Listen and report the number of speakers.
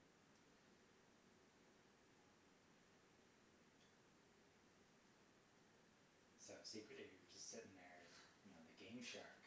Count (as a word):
one